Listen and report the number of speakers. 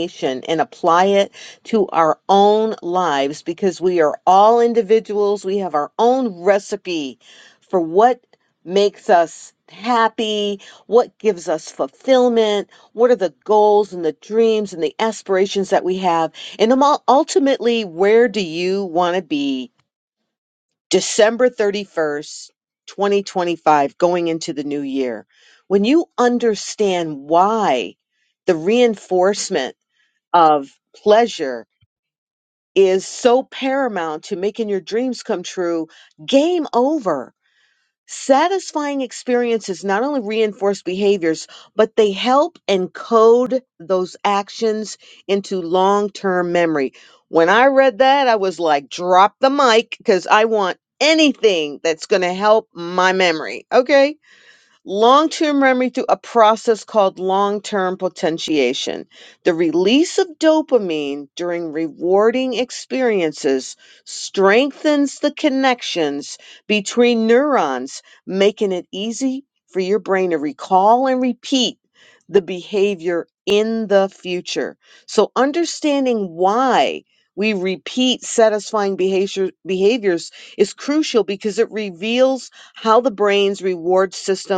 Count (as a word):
one